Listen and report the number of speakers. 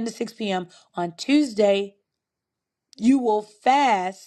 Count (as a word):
one